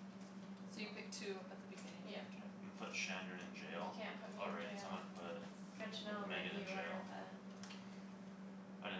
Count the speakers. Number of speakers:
three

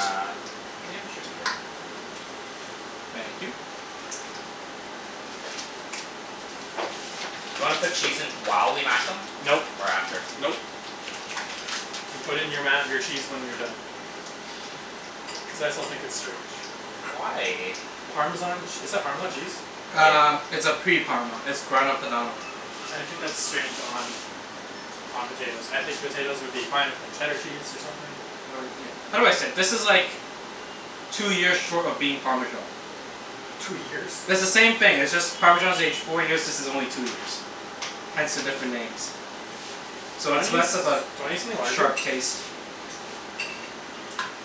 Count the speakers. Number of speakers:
three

